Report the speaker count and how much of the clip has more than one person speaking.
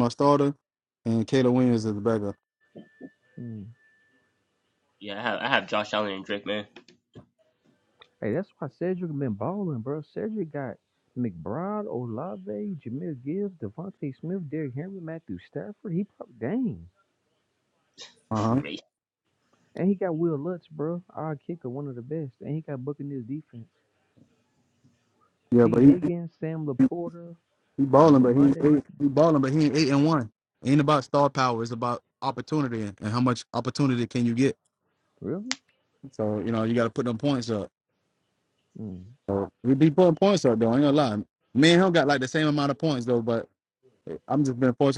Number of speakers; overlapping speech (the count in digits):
3, about 3%